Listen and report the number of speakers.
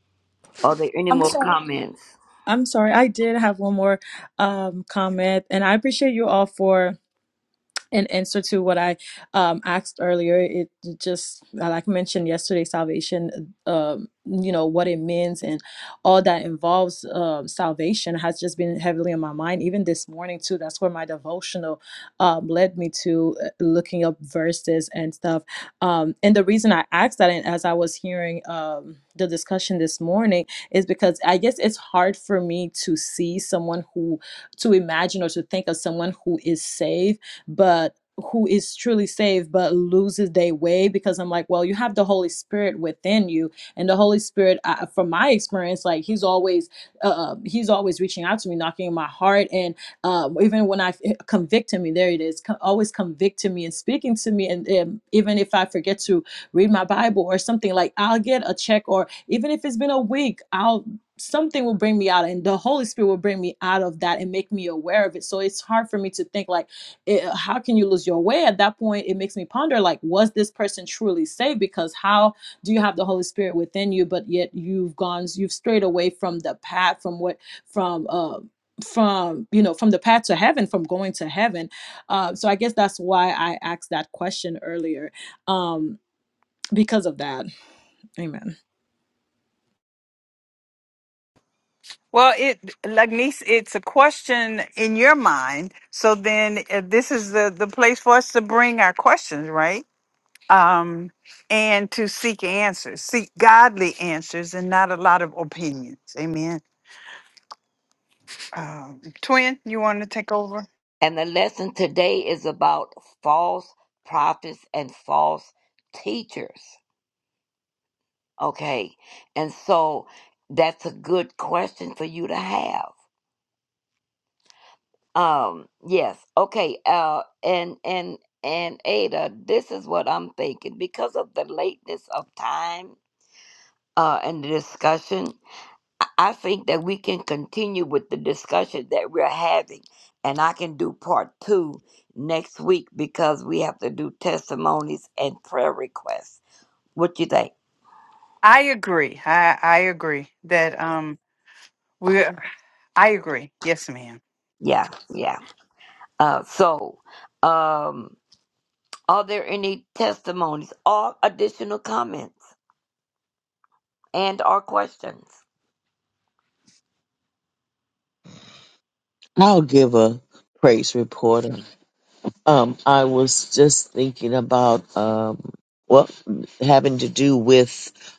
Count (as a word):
four